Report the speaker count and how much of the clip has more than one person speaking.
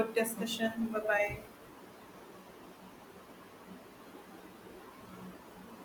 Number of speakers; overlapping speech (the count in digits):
1, no overlap